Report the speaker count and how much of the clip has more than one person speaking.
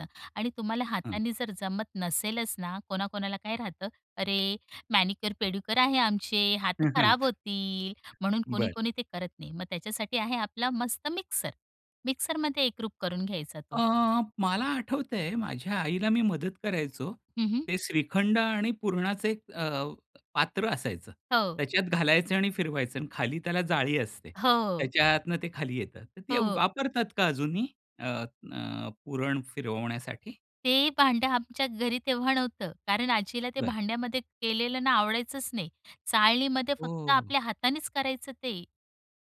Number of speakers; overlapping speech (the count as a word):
two, about 5%